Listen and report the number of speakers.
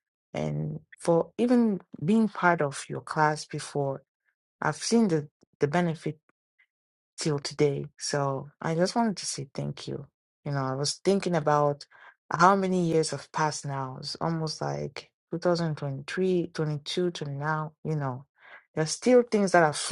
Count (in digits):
1